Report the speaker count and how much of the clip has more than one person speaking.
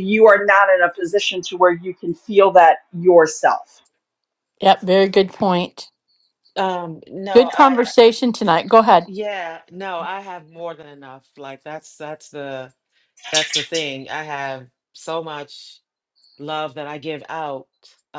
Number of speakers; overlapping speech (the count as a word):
three, about 3%